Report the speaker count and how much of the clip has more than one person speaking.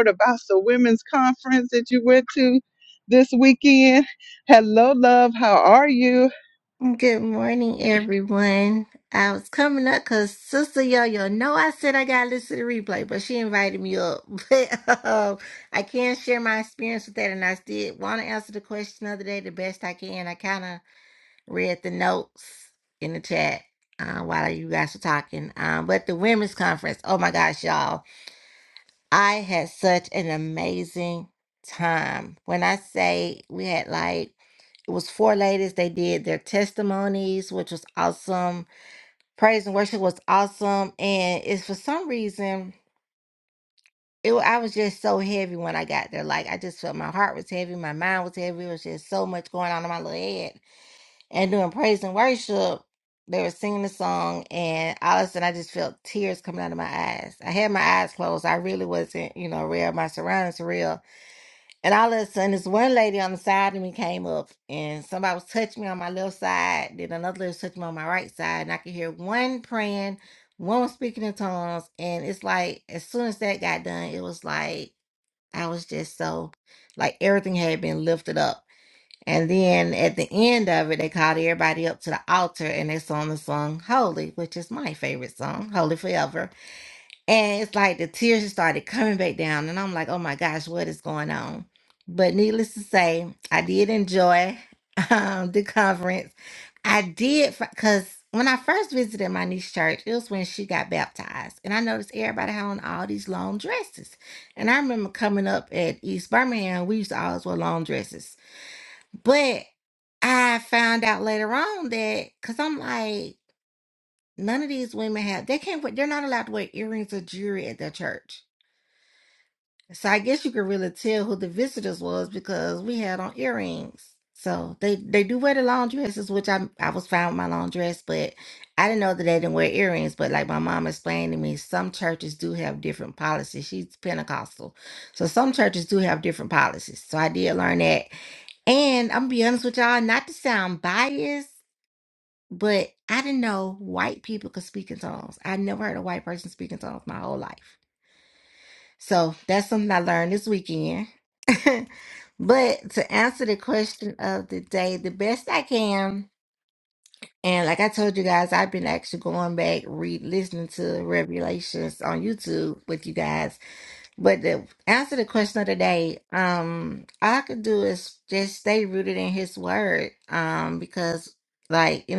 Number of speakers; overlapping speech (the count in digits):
2, no overlap